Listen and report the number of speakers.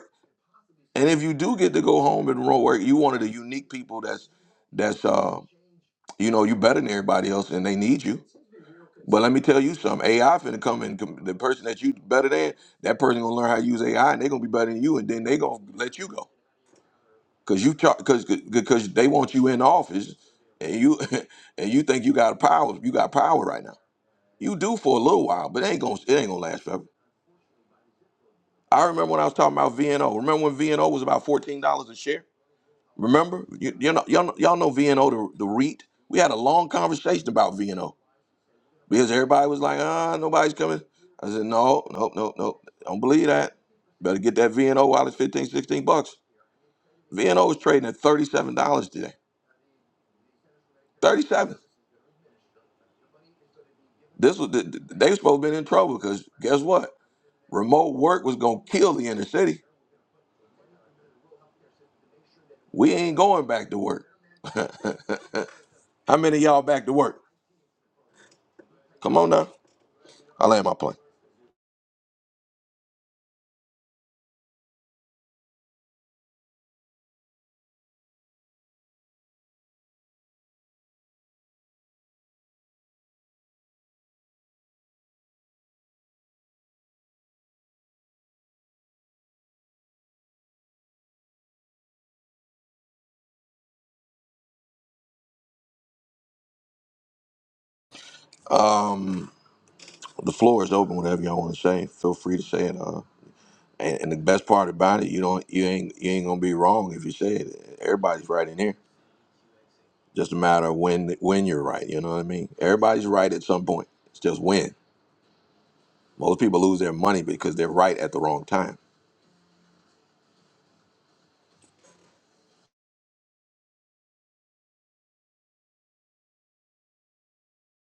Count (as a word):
one